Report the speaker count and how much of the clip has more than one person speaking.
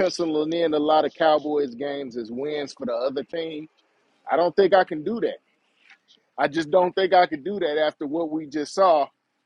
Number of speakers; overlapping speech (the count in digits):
1, no overlap